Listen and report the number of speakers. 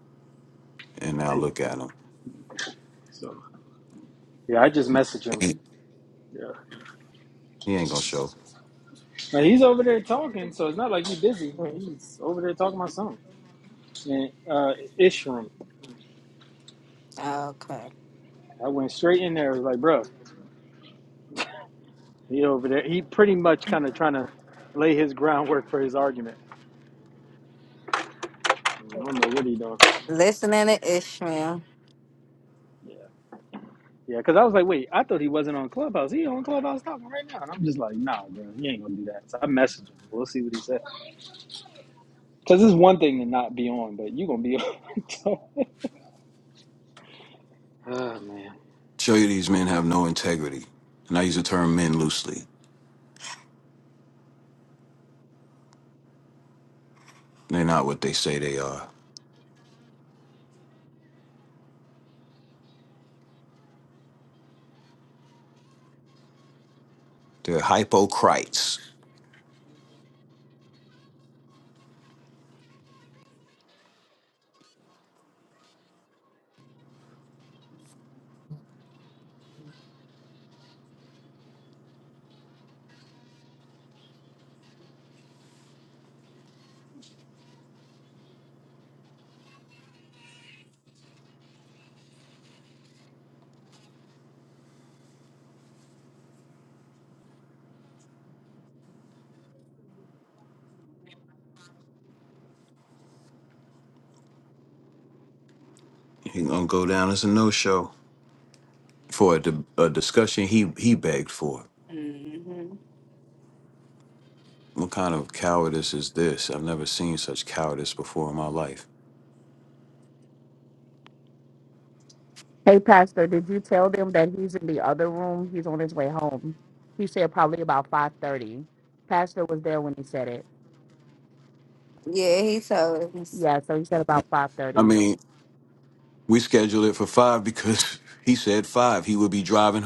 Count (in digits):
4